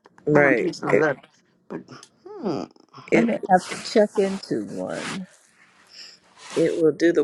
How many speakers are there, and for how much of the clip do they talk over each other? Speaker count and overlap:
3, about 14%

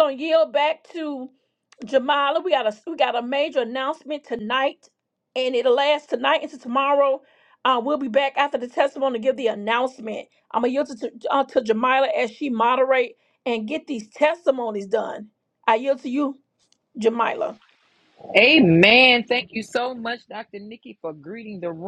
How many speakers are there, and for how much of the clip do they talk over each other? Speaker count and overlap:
2, no overlap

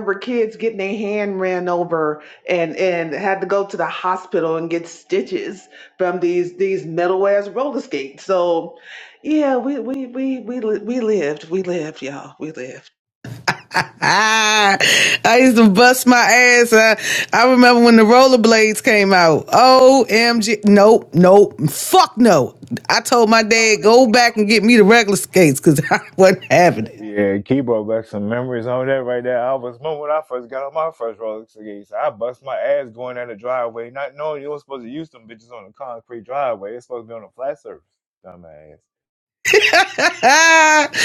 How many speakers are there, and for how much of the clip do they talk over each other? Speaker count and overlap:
3, no overlap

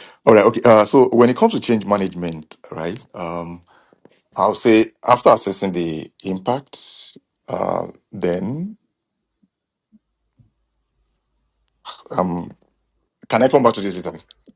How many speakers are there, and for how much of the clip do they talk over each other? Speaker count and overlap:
1, no overlap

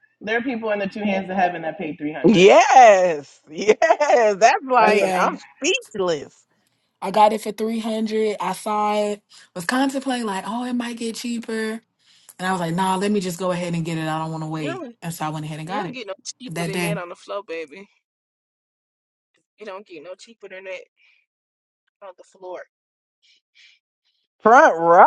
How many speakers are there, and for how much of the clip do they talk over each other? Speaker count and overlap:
4, about 7%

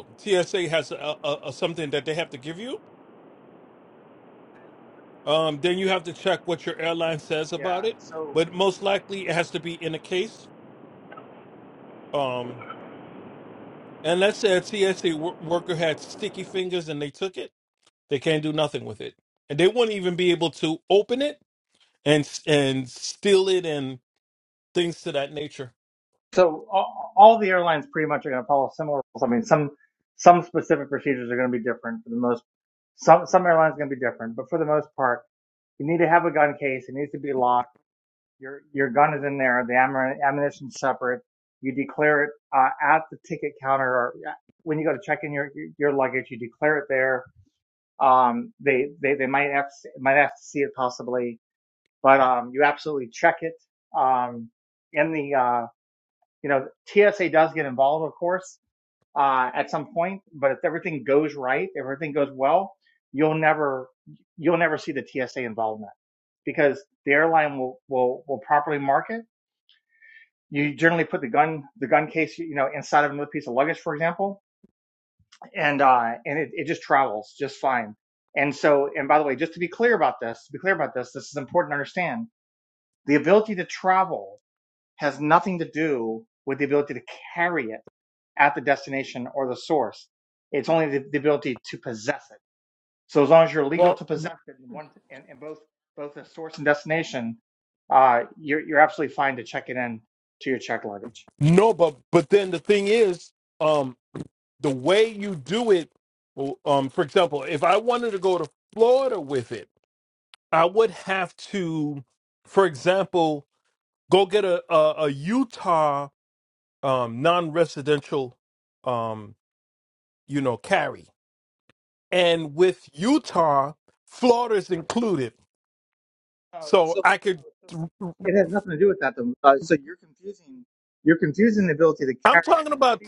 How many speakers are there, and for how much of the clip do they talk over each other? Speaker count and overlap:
2, about 1%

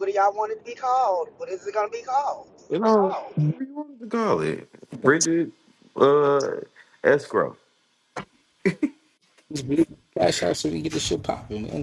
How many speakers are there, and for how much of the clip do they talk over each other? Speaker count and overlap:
3, about 1%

